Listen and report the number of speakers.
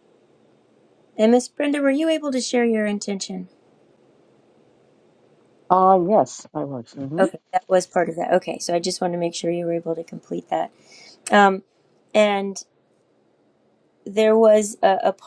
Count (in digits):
2